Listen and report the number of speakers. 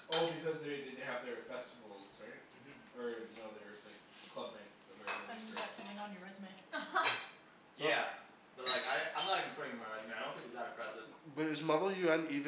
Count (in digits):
4